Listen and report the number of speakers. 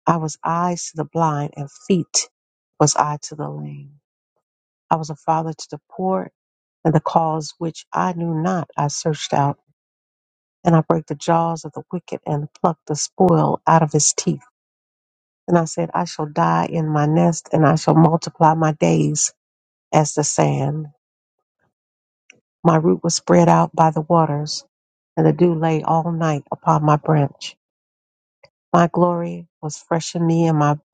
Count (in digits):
1